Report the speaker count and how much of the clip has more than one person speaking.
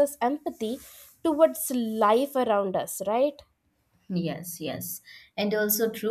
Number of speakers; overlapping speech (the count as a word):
two, no overlap